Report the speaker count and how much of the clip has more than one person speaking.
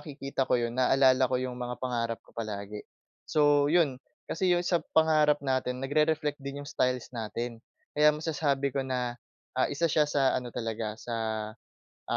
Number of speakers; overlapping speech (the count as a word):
one, no overlap